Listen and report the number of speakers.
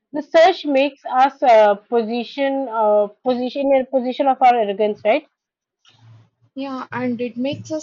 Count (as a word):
two